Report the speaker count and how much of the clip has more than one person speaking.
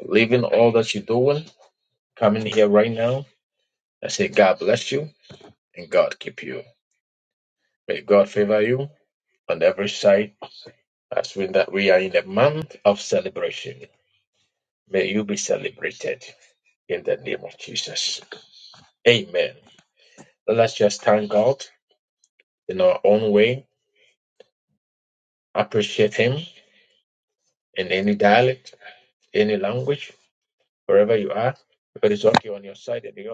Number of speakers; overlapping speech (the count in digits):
1, no overlap